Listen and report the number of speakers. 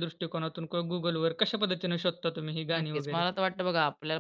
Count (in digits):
2